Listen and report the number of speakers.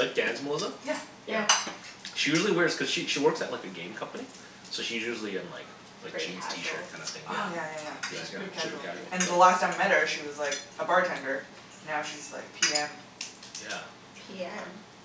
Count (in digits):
3